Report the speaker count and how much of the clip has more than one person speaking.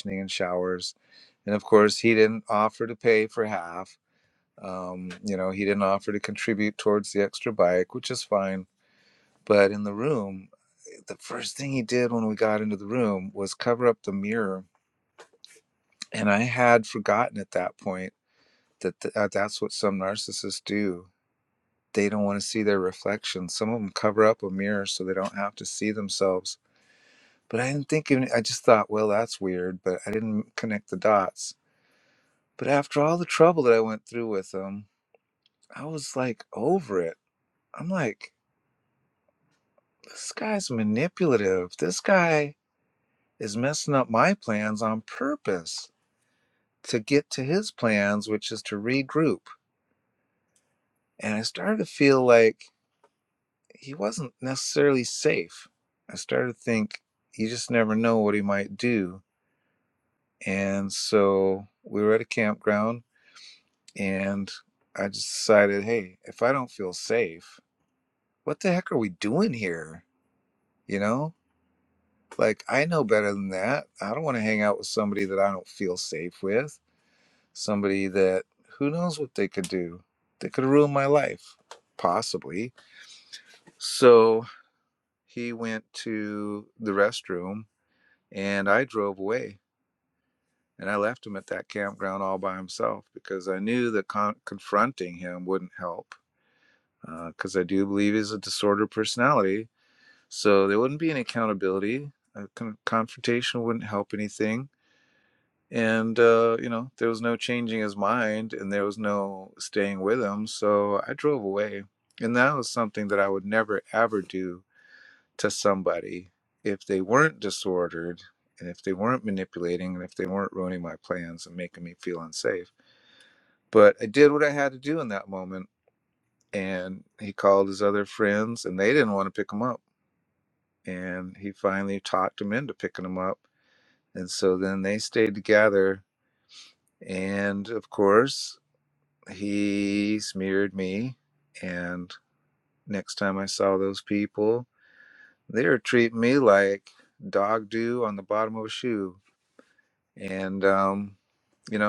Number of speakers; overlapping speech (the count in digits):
1, no overlap